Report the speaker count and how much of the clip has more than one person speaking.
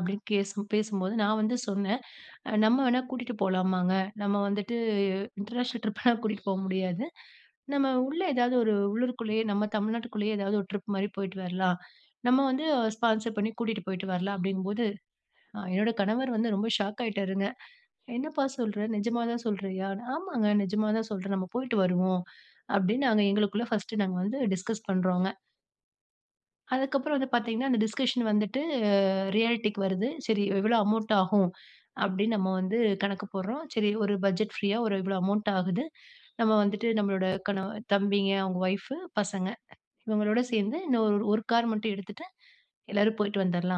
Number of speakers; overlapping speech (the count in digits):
1, no overlap